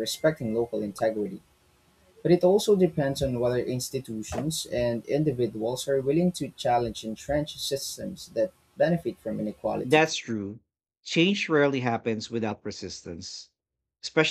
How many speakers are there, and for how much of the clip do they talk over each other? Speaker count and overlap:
two, about 1%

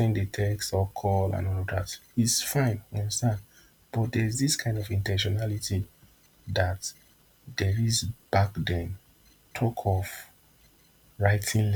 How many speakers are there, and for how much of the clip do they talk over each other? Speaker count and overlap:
one, no overlap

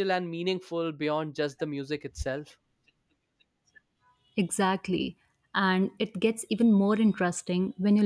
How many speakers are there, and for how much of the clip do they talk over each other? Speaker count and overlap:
two, no overlap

